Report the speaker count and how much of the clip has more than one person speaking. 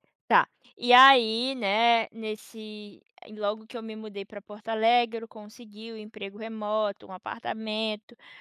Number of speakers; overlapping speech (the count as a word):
one, no overlap